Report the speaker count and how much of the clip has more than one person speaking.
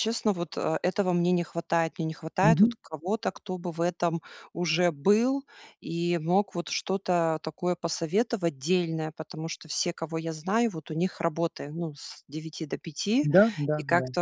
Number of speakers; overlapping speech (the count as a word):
two, about 5%